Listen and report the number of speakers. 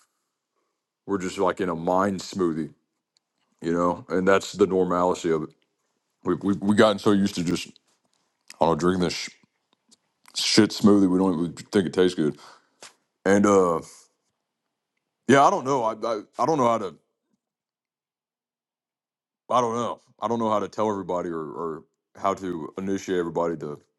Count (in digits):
1